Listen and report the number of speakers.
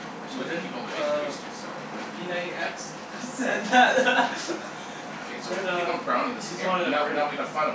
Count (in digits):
2